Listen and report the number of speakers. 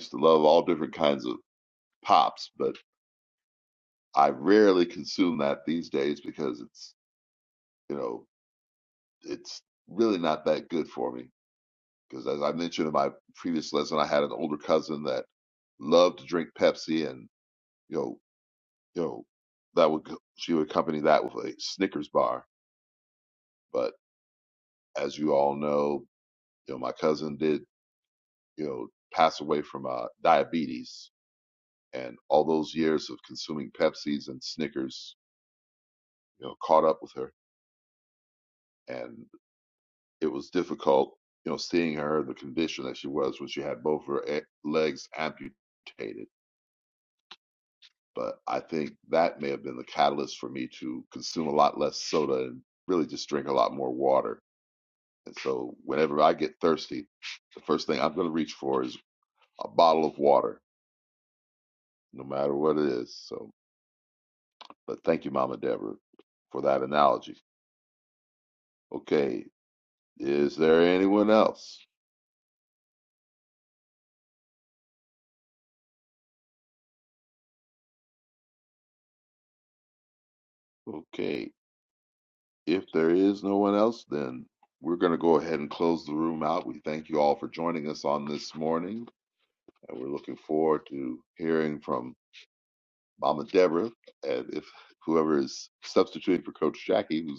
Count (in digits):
1